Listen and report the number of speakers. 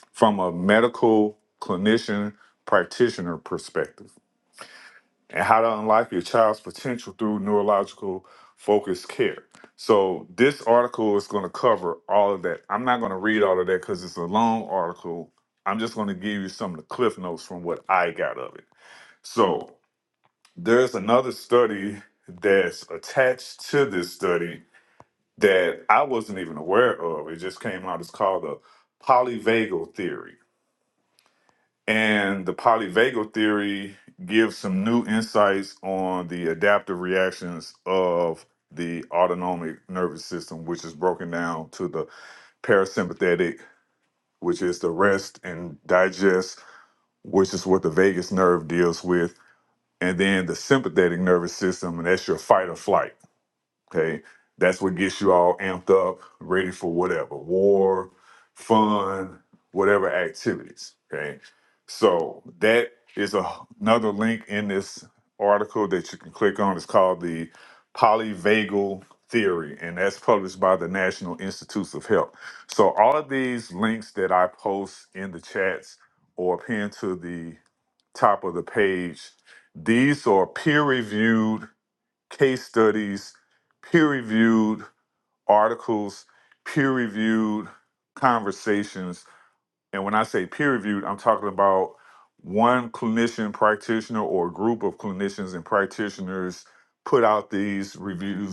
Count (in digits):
1